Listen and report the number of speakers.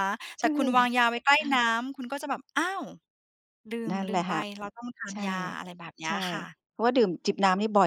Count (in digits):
2